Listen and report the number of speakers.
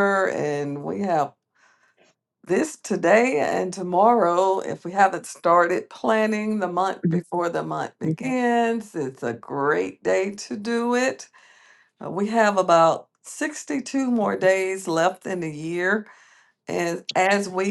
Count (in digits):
1